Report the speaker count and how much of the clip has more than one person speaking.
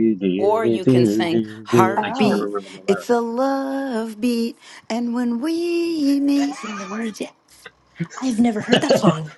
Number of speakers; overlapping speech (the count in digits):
3, about 21%